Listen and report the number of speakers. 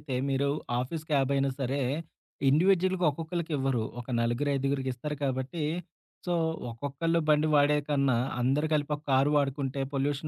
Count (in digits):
1